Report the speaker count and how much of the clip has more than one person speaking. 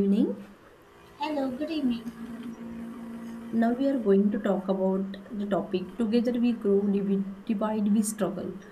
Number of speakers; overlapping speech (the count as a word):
two, no overlap